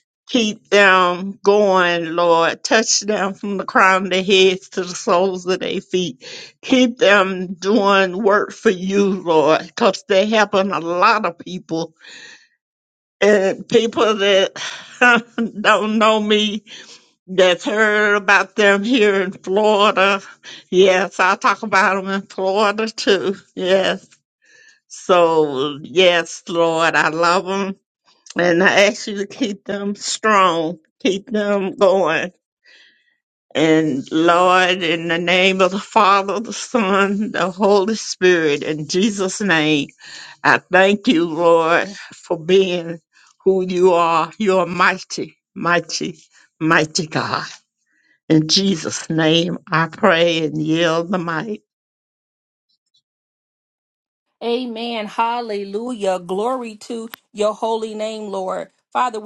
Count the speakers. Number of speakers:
two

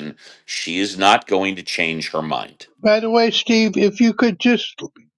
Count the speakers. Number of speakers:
two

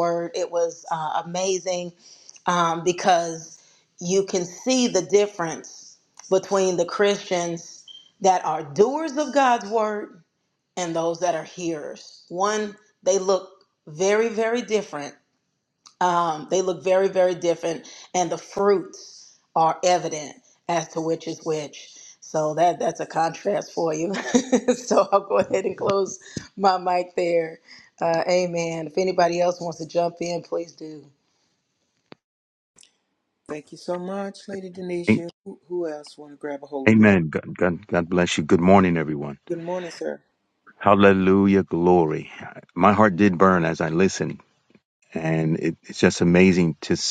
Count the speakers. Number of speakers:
three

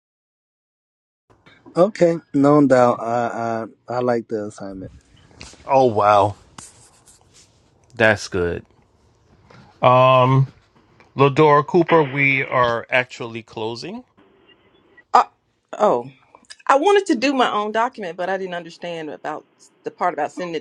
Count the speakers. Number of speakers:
three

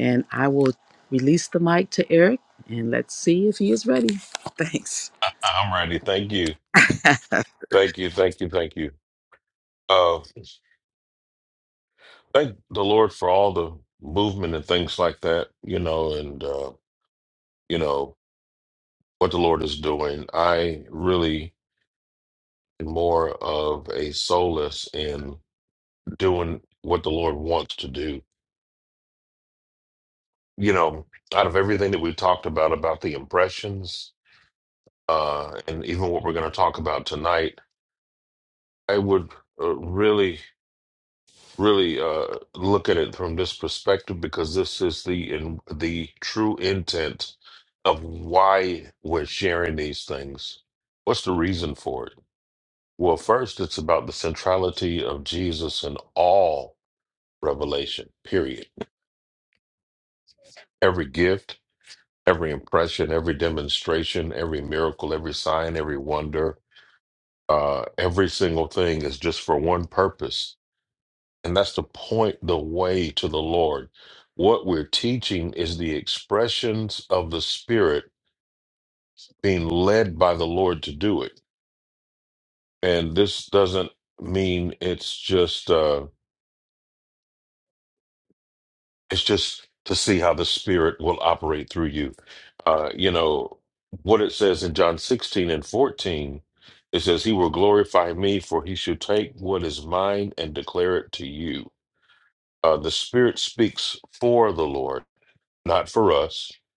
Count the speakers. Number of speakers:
two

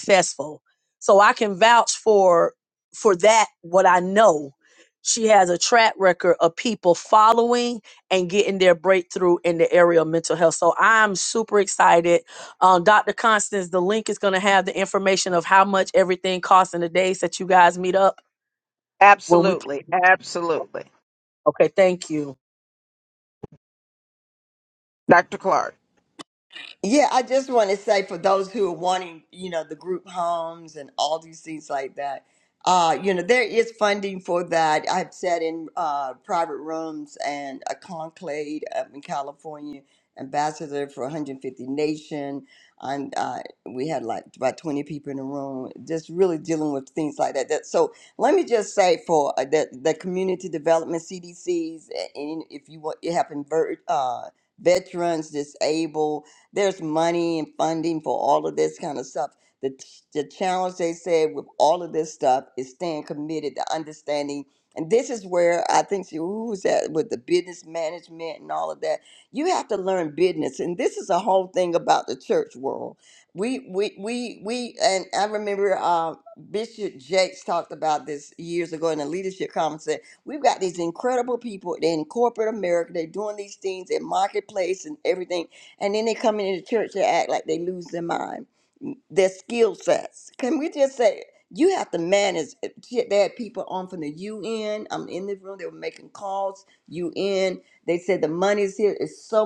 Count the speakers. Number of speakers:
three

